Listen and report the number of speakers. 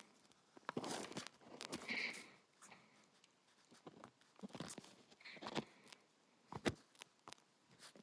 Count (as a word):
zero